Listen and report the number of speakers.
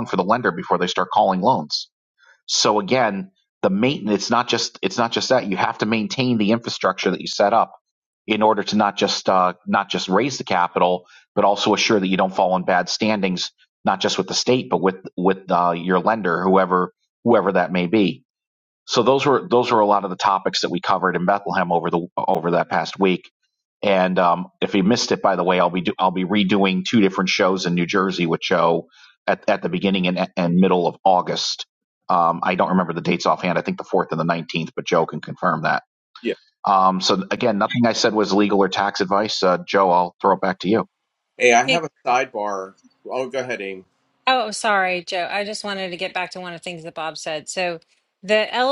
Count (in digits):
3